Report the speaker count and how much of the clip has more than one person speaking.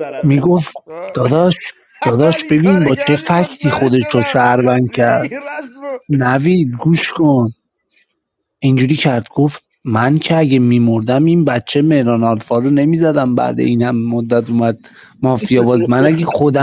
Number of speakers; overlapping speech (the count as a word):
two, about 18%